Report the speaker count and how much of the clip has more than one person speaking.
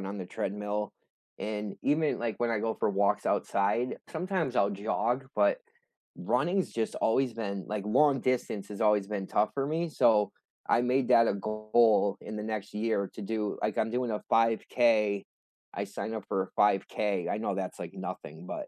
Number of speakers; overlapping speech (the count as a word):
one, no overlap